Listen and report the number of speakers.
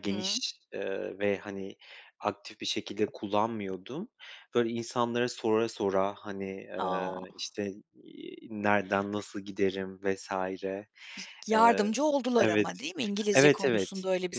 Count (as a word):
two